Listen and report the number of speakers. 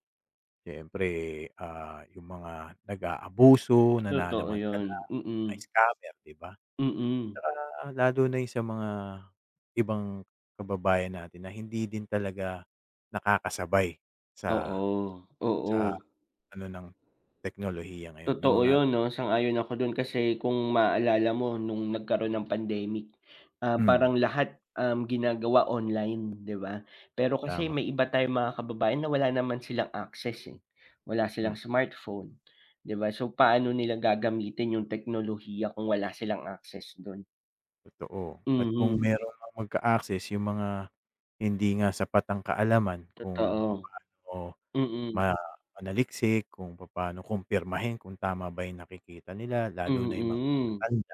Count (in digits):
2